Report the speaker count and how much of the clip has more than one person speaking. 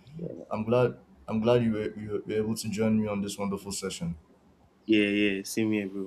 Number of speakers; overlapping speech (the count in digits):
2, no overlap